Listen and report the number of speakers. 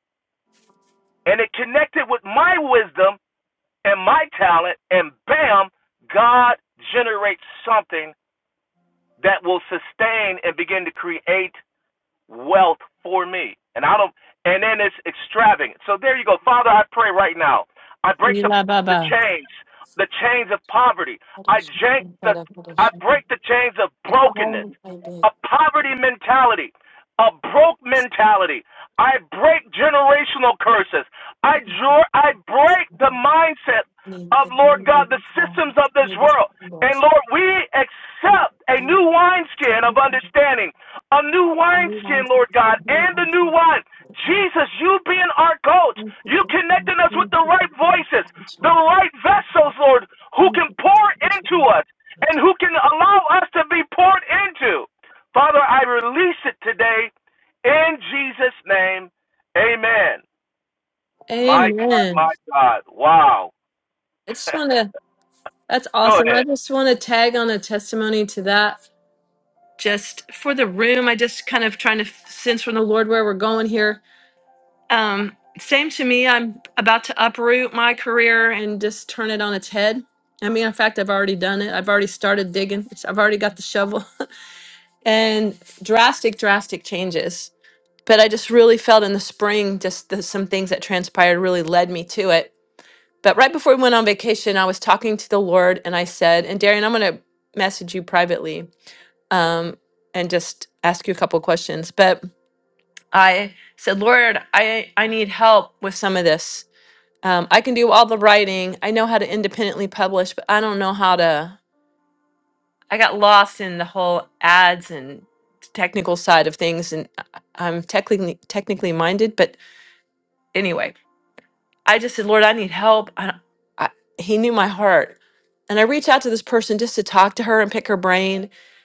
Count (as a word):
two